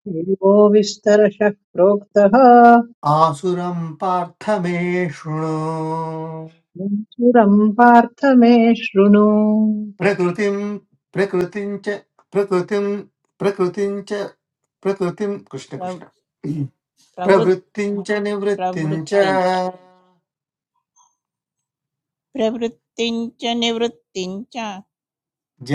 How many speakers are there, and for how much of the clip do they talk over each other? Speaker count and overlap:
3, about 5%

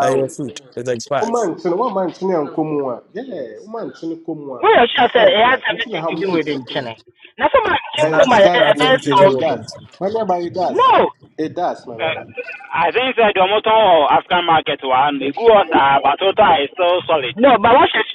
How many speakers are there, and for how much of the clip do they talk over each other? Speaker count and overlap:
4, about 21%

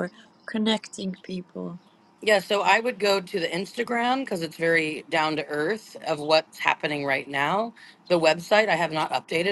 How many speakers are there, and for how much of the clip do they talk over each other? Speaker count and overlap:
2, no overlap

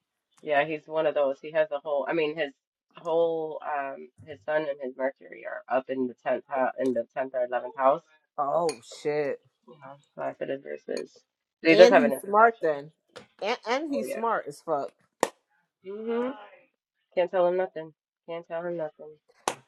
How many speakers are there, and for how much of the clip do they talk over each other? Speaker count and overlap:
2, about 7%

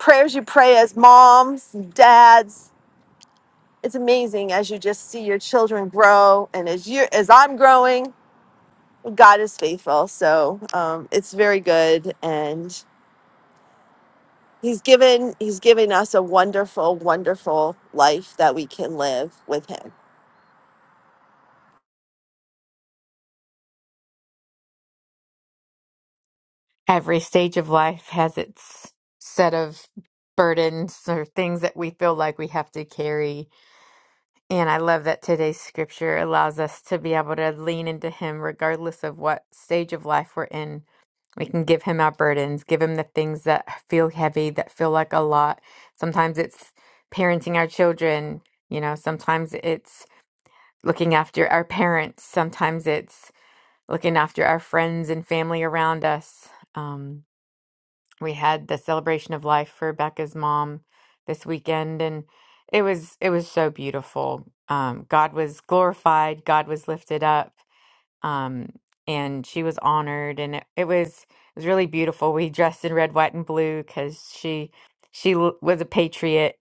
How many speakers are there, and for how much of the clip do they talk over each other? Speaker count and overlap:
2, no overlap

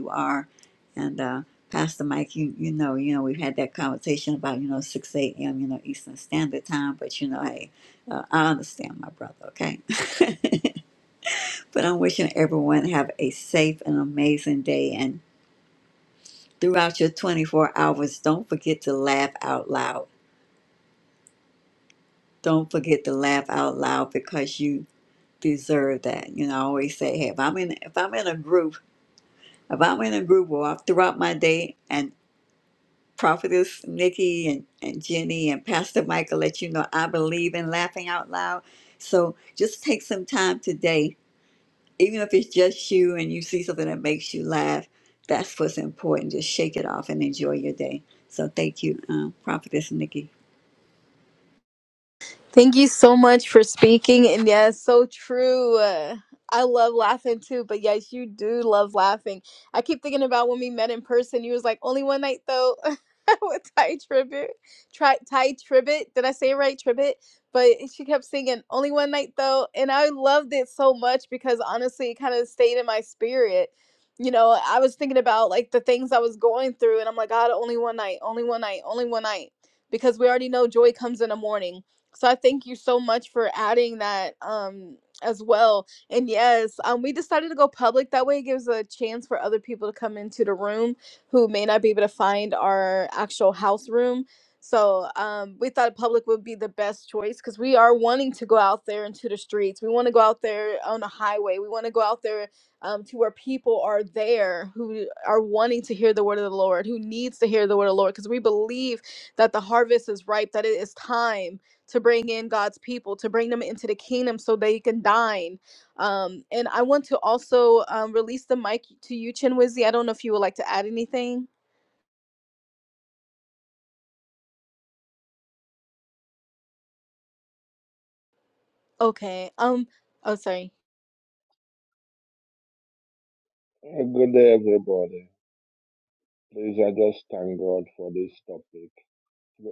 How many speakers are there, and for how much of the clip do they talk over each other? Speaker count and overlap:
3, no overlap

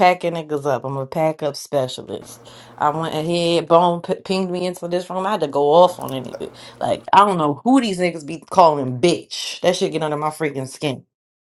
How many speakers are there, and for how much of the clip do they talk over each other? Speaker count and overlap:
1, no overlap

